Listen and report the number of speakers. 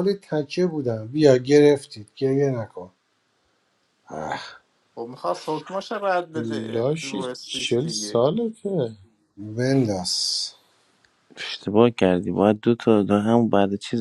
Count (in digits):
4